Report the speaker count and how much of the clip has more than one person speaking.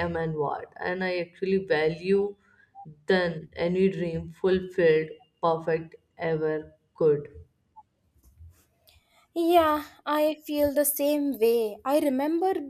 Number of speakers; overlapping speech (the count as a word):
two, no overlap